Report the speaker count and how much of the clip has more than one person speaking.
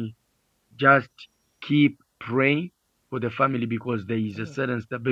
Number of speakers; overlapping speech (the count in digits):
1, no overlap